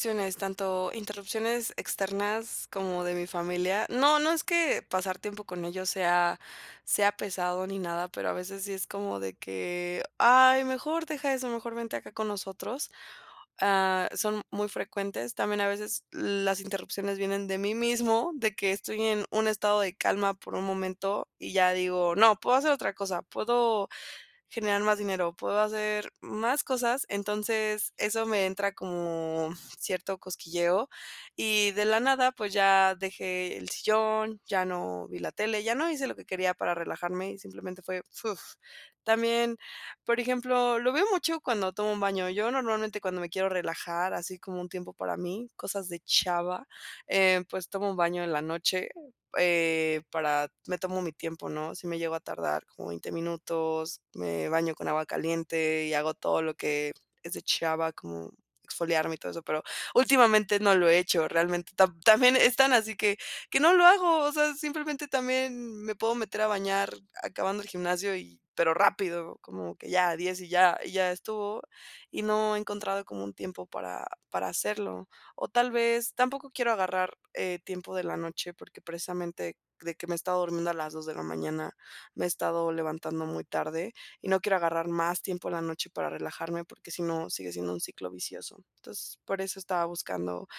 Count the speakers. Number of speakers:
one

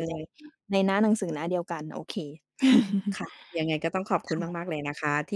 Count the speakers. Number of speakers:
two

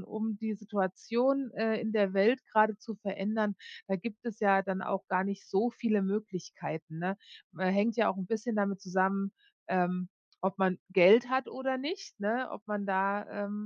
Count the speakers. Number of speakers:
one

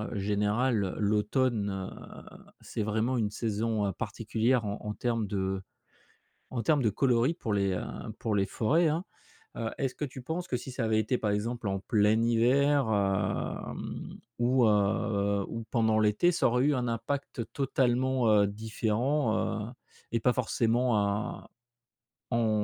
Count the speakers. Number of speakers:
one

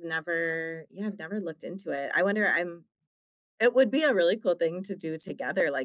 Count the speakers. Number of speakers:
one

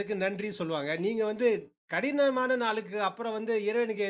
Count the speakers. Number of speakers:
one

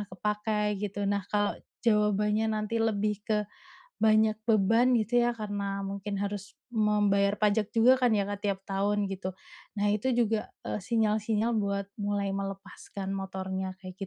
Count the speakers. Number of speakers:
one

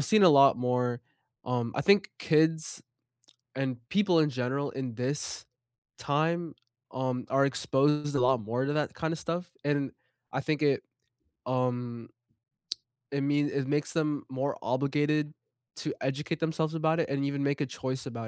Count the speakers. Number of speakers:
one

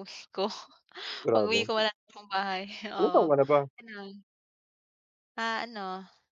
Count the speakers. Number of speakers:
two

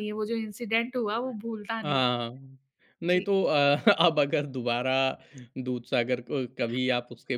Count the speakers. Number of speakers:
two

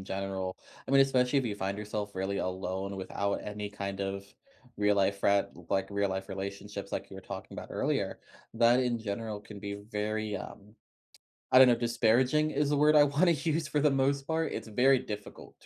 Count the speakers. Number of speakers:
one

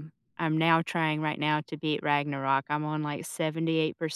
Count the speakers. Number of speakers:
one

